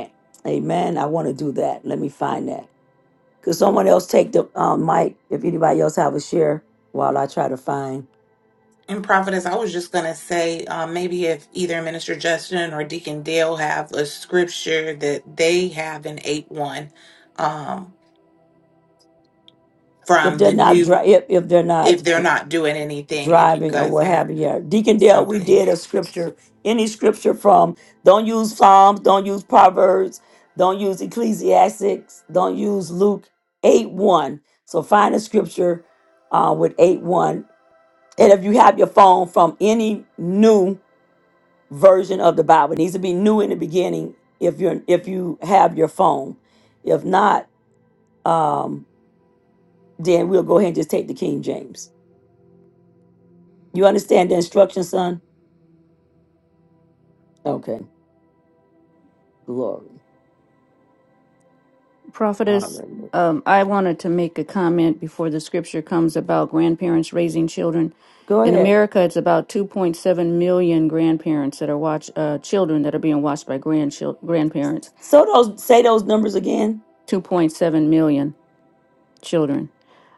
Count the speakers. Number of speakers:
three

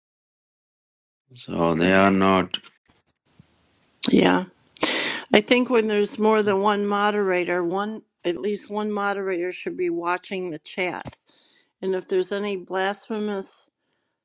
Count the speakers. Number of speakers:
two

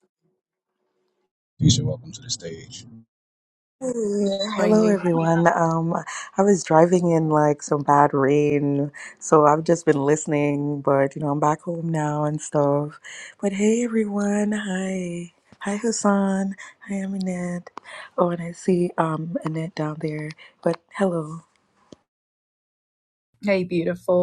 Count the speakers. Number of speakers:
three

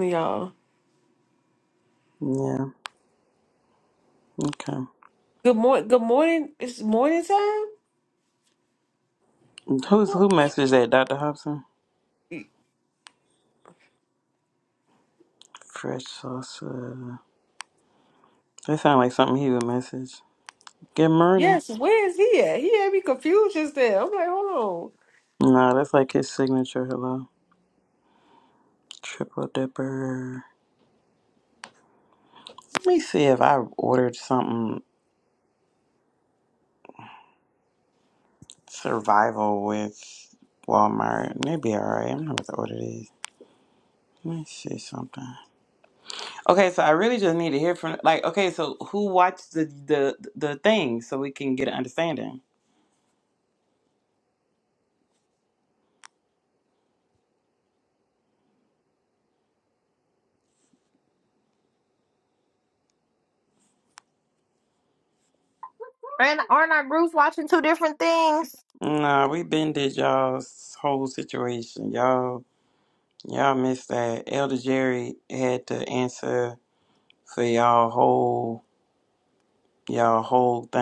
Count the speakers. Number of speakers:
three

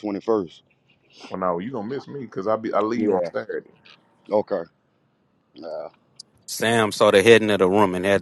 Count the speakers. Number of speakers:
three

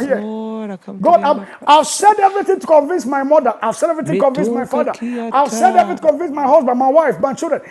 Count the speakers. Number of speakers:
two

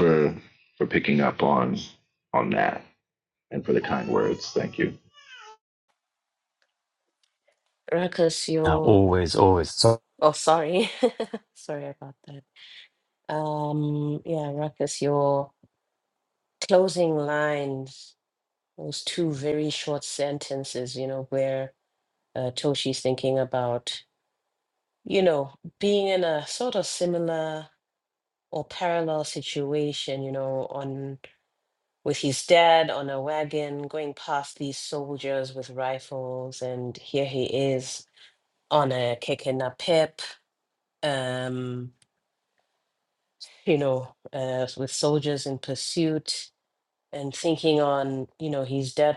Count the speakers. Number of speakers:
three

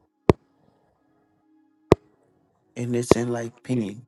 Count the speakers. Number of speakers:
one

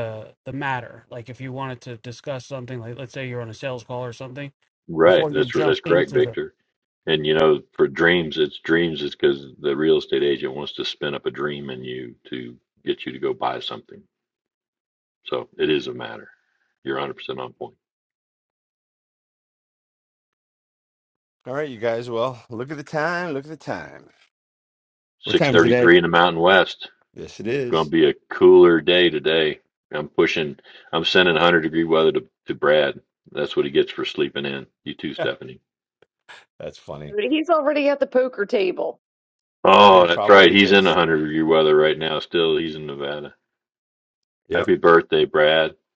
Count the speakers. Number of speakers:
four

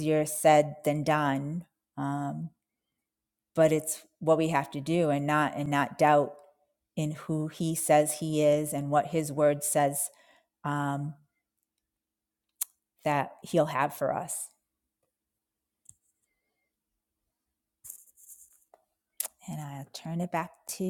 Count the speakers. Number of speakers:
one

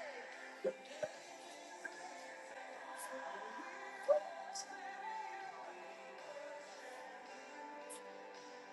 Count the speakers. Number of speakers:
zero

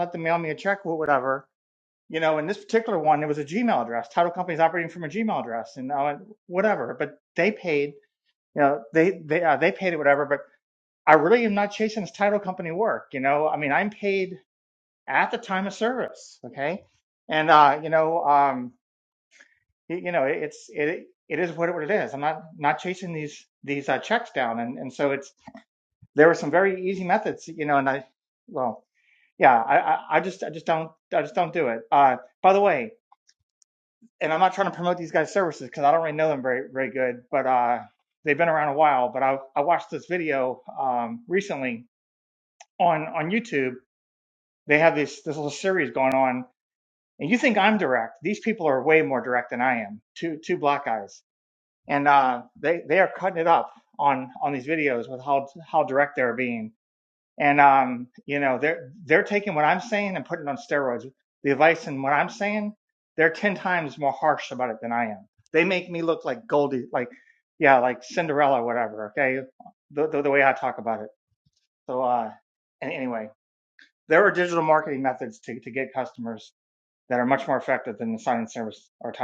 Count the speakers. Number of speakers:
one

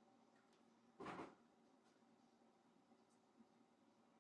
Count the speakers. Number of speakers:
zero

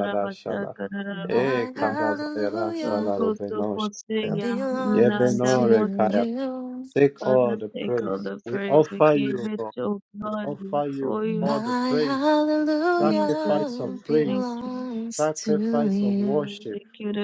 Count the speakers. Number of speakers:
three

